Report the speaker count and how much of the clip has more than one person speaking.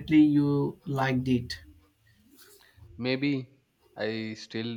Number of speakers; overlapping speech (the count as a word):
two, no overlap